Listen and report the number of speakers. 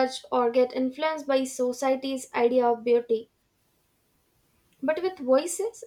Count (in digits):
1